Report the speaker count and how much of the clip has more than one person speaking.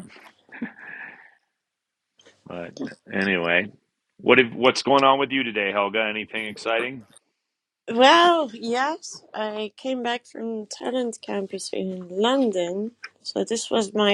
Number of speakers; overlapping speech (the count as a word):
two, no overlap